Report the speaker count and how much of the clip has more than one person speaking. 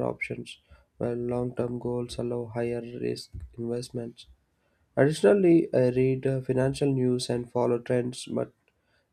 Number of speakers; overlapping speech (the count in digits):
1, no overlap